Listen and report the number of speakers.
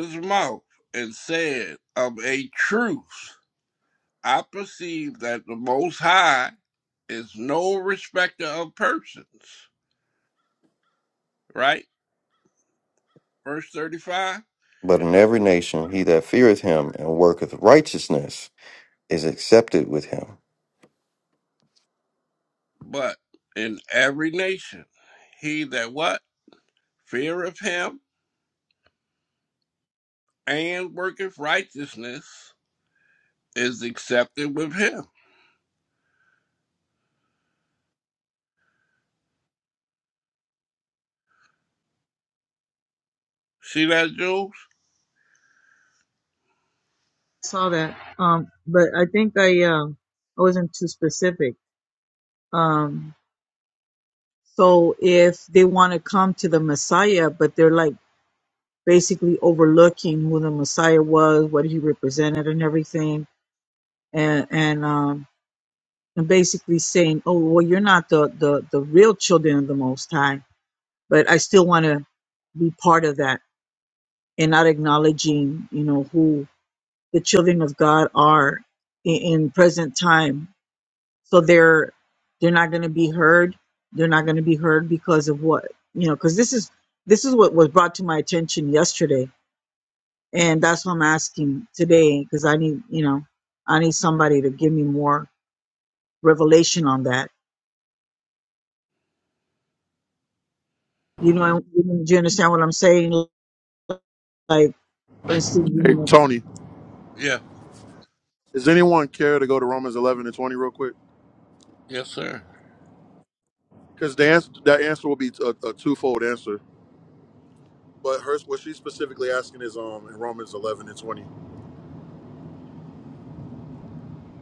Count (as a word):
four